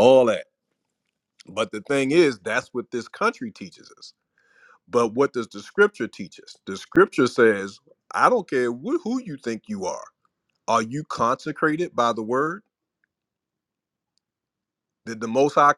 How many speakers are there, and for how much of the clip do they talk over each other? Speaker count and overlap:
1, no overlap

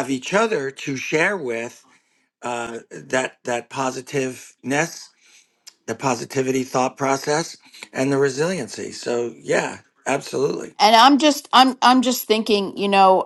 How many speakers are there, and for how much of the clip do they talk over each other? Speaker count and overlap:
2, no overlap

